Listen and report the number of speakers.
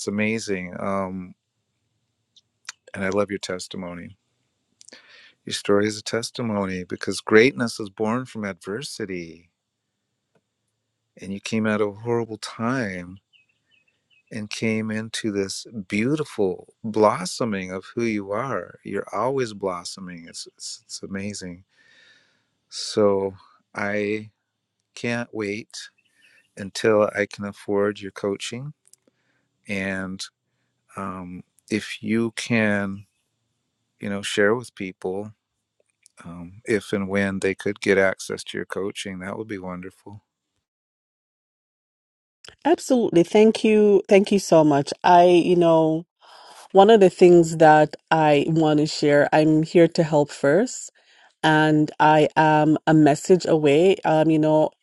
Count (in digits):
2